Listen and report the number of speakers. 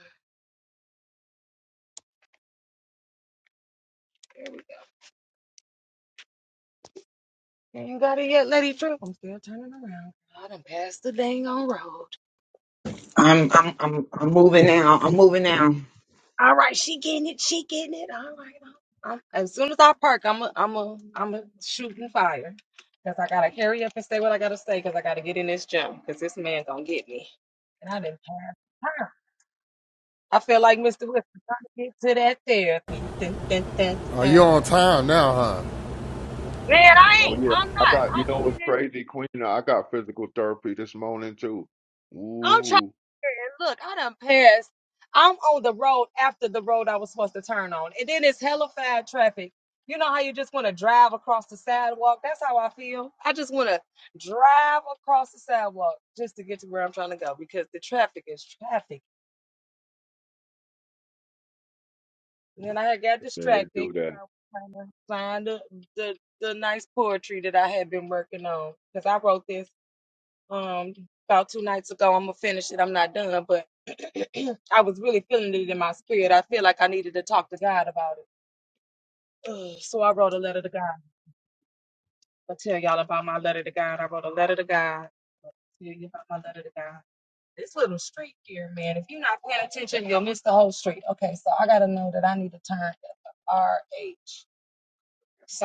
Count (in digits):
4